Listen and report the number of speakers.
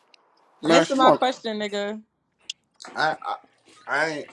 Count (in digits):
2